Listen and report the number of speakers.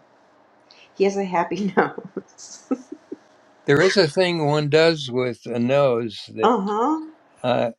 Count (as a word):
two